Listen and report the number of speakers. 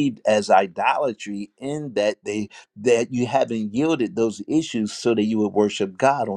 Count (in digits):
1